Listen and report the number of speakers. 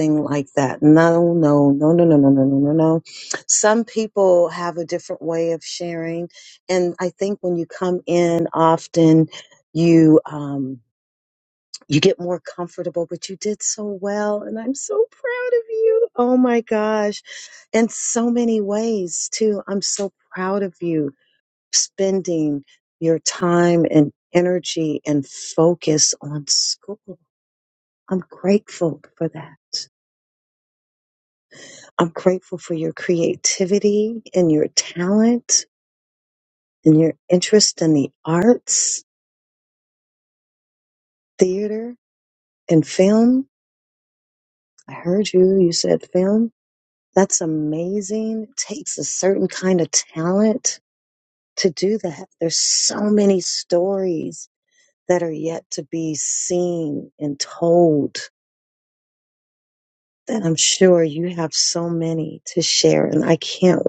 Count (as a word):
one